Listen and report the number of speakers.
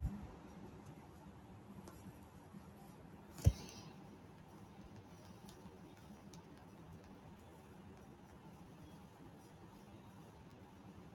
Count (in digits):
0